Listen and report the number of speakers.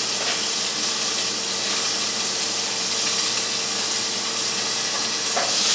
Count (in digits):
0